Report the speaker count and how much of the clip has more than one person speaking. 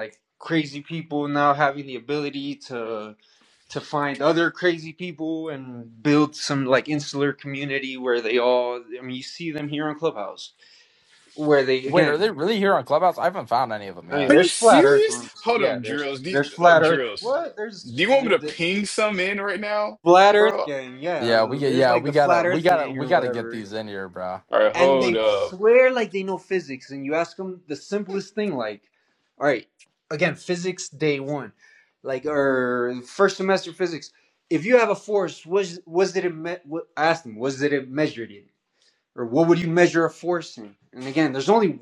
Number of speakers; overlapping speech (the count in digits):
3, about 18%